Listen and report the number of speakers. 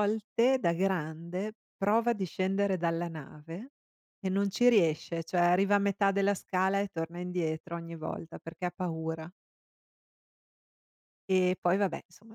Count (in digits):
1